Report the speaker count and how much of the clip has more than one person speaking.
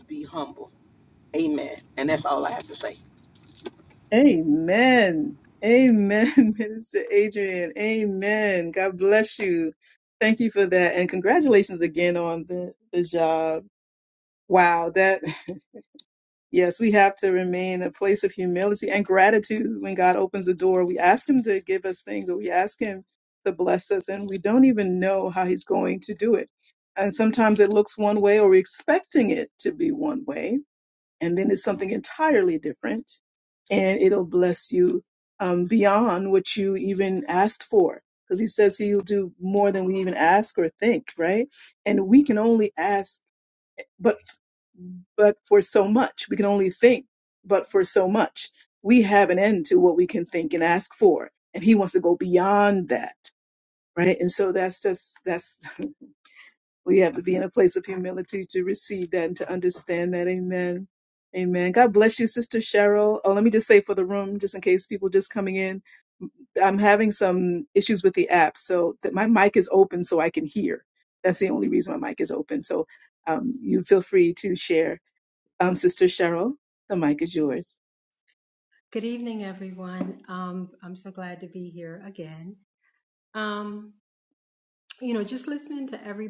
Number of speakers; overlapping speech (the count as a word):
three, no overlap